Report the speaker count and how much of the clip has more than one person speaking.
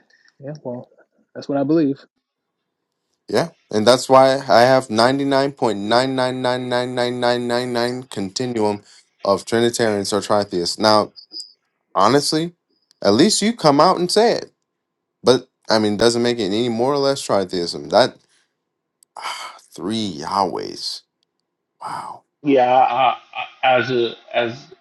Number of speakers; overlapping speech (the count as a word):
three, no overlap